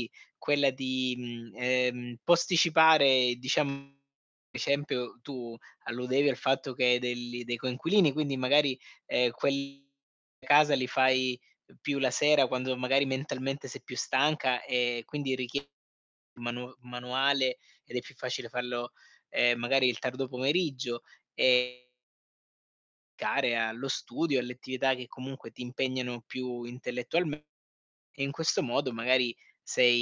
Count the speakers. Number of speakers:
1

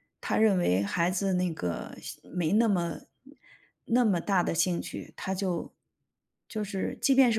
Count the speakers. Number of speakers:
1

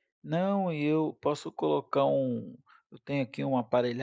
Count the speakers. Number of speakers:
1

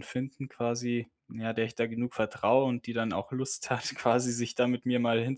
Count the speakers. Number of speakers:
1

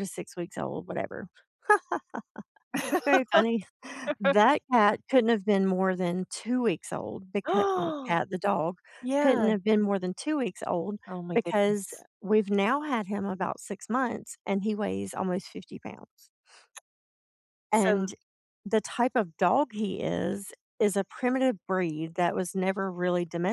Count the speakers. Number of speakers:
2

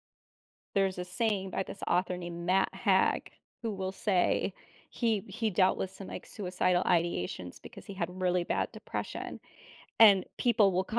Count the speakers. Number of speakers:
1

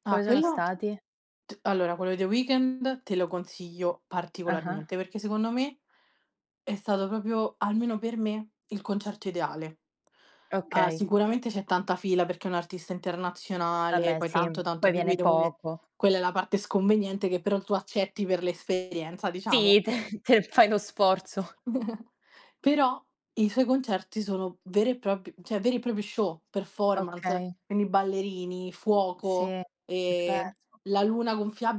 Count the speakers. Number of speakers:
2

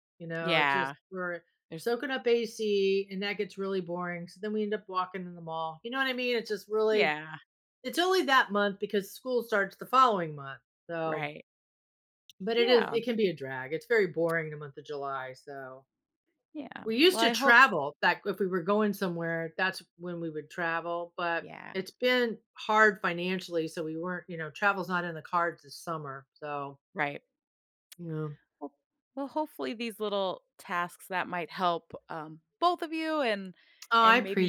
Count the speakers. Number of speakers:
2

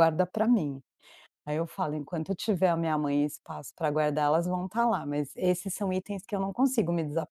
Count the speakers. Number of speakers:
1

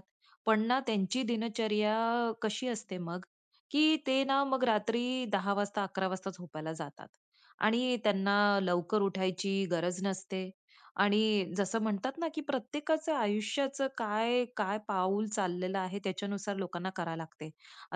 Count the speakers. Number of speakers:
1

